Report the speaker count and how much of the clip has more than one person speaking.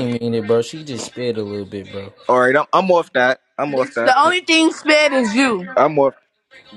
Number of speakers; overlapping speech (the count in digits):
3, about 3%